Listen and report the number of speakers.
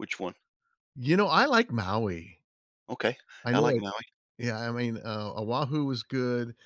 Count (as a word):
two